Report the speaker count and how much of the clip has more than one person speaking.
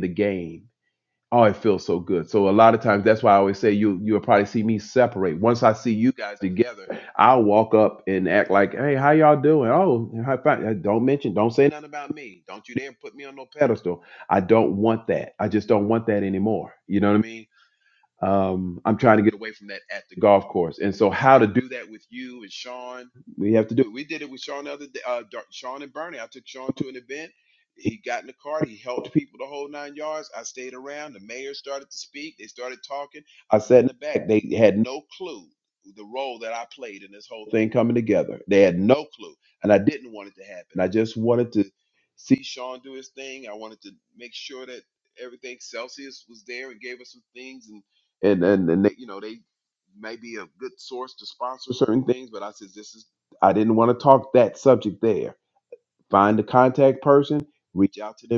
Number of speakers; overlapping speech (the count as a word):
one, no overlap